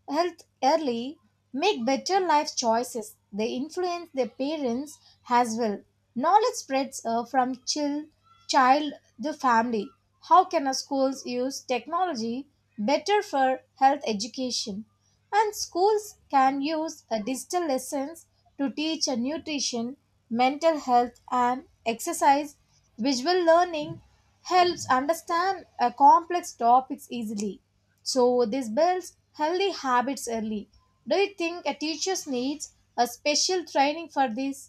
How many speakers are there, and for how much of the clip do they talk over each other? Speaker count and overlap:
1, no overlap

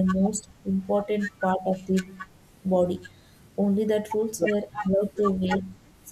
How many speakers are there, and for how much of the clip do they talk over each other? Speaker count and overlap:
1, no overlap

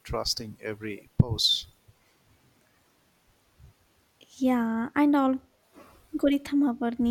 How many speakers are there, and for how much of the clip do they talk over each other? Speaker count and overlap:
2, no overlap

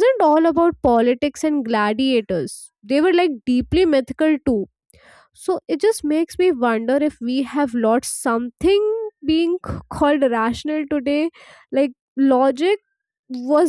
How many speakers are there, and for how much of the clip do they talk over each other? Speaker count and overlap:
1, no overlap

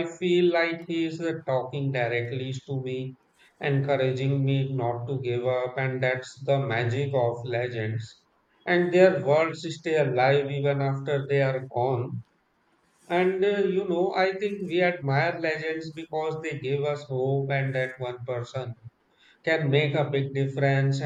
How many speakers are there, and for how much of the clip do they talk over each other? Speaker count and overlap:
1, no overlap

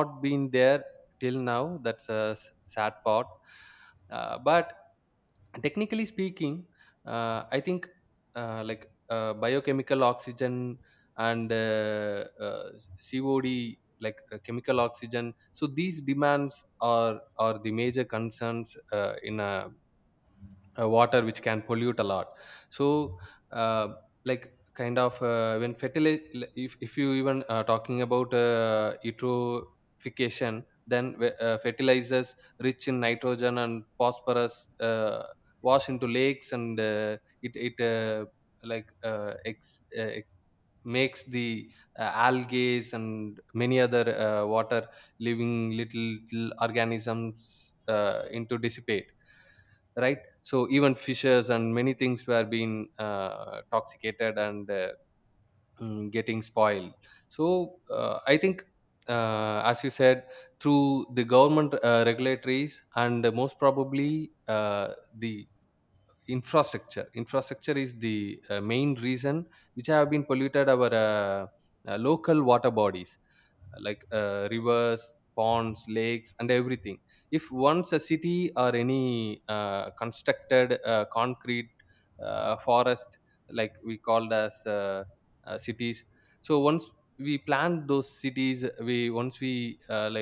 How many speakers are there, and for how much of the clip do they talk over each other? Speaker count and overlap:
1, no overlap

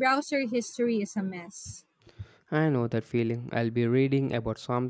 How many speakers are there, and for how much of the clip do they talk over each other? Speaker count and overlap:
2, no overlap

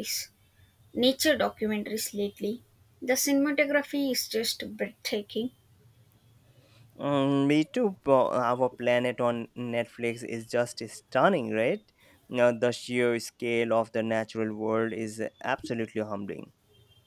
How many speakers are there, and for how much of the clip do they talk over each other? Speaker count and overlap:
2, no overlap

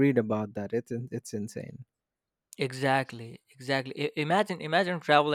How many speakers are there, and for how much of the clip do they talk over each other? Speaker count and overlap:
2, no overlap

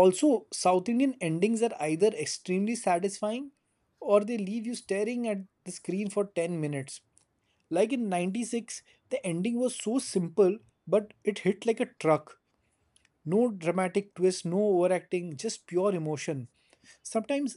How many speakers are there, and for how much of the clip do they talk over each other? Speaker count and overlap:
1, no overlap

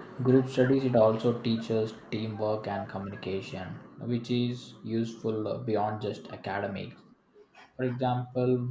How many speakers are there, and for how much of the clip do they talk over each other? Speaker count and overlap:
1, no overlap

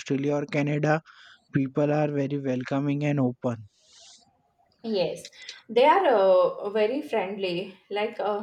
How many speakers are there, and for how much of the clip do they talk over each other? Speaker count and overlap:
2, no overlap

